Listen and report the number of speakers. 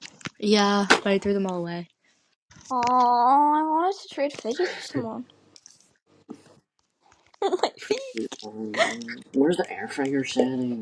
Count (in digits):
3